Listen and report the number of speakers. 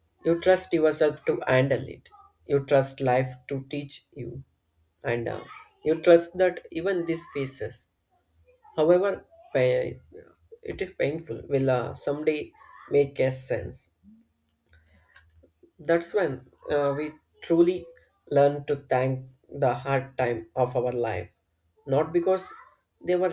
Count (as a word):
one